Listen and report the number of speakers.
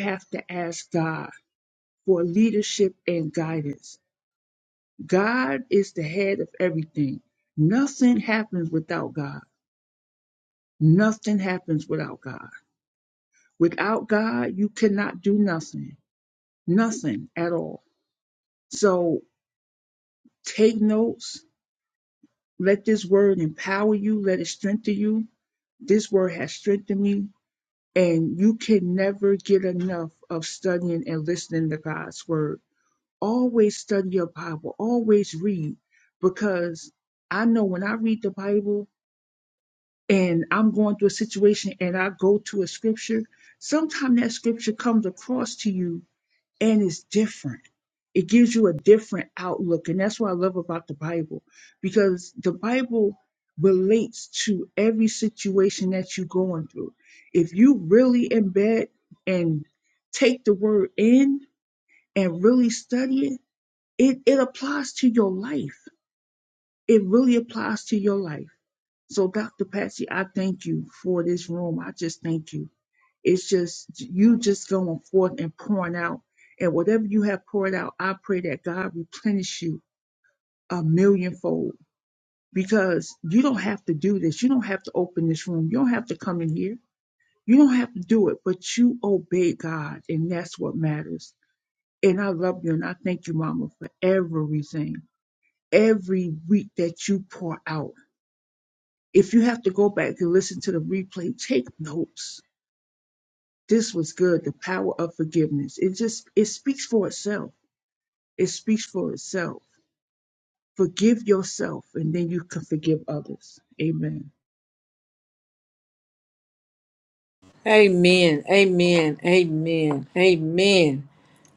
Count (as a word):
two